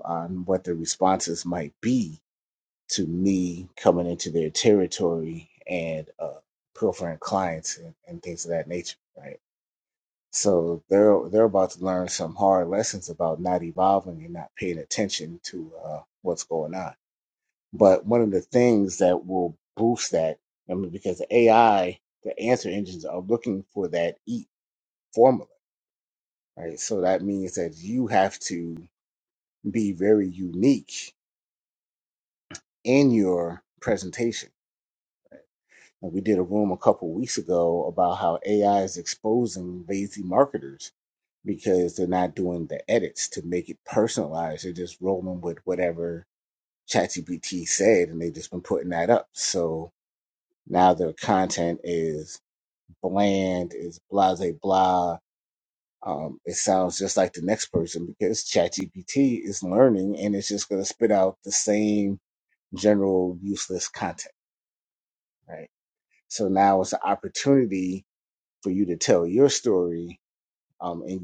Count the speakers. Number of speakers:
1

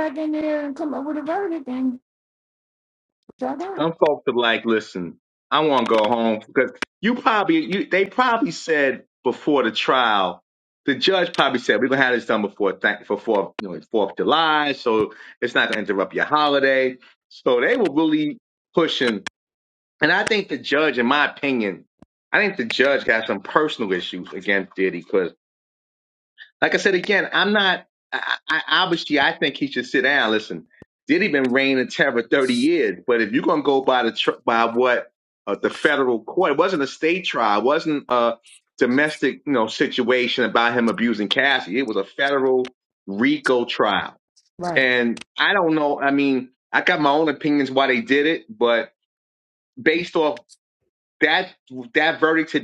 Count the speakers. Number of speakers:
2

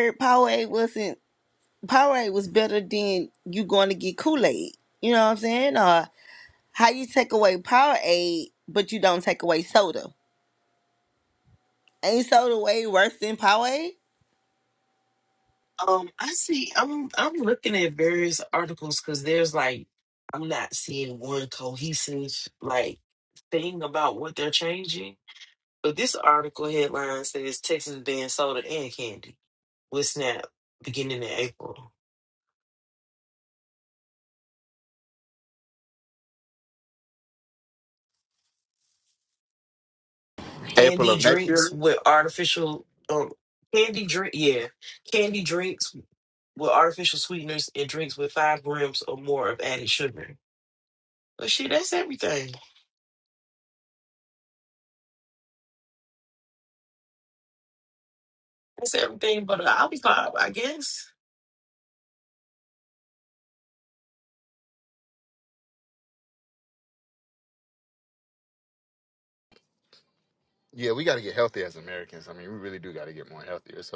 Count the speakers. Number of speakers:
3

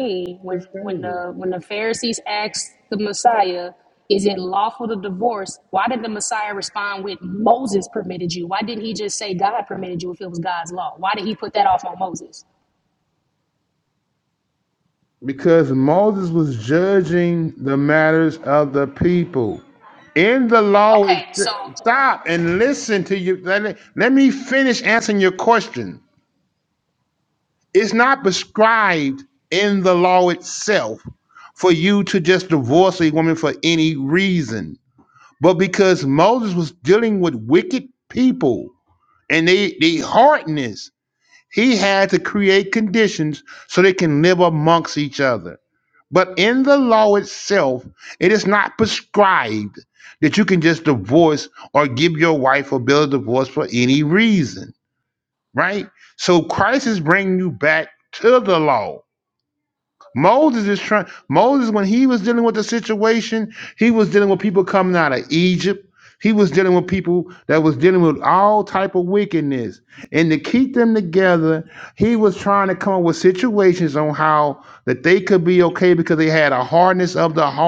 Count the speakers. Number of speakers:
2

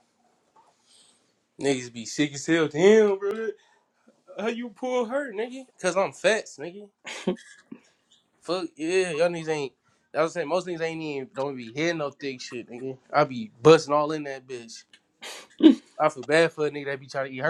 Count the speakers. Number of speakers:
1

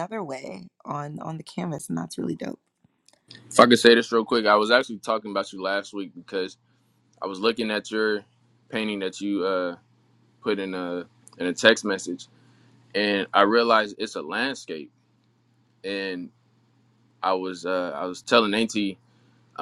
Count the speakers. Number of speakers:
2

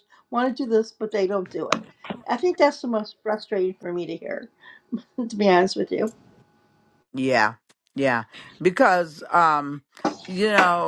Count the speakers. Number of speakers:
2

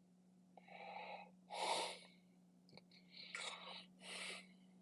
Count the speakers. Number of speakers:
0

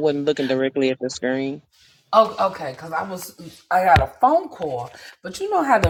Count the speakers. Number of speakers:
2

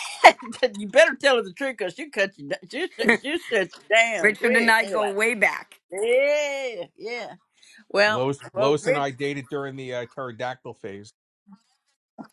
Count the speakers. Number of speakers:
3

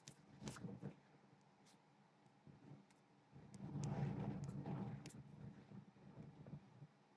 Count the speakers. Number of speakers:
0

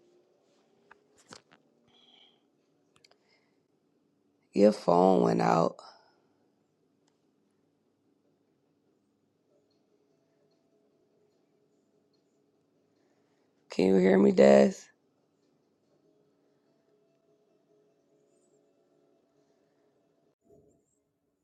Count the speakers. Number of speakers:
1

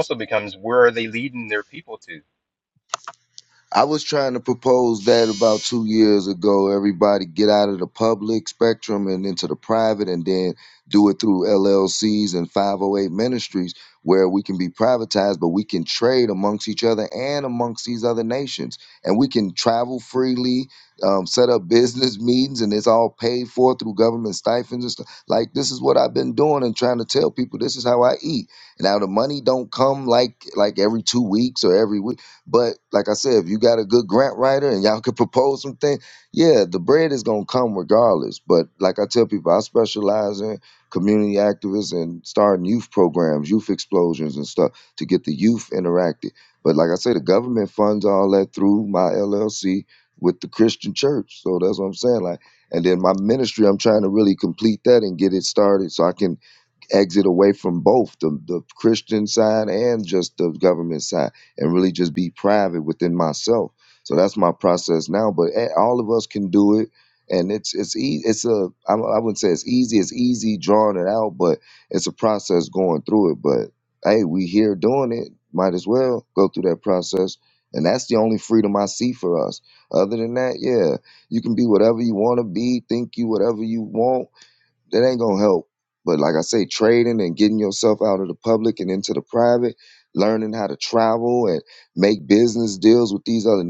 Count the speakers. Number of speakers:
2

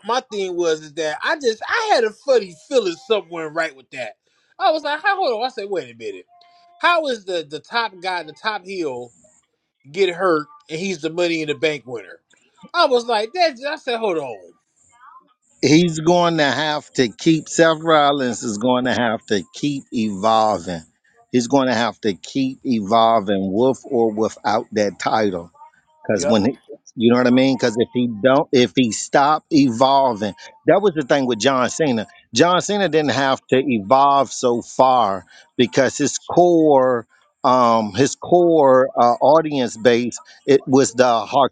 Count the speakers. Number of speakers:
2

